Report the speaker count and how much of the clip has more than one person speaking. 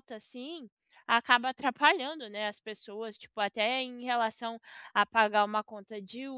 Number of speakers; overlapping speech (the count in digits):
1, no overlap